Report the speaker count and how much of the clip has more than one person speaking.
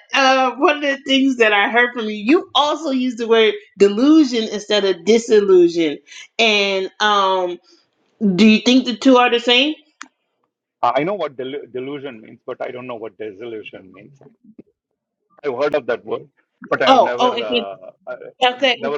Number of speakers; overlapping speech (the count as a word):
two, about 5%